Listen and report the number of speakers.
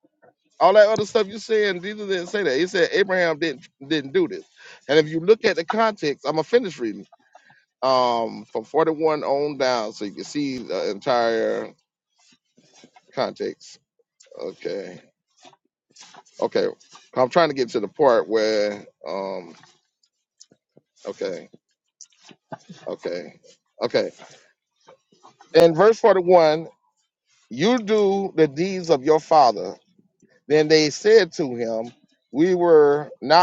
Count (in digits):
1